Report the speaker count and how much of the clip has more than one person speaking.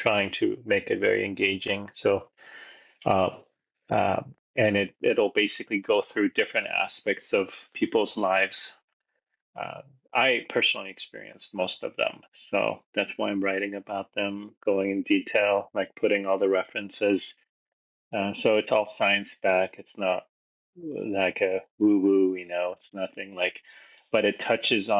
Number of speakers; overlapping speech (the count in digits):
1, no overlap